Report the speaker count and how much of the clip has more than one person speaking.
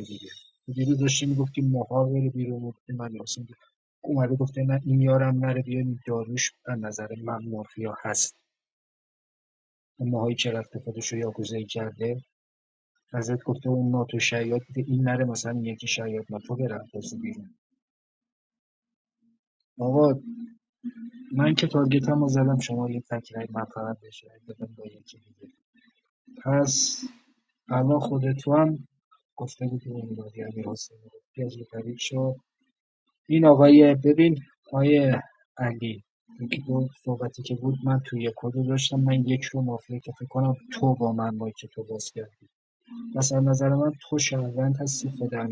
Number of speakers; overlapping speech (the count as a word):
one, no overlap